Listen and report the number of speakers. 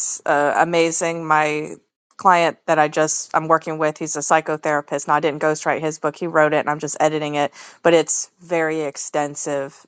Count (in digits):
1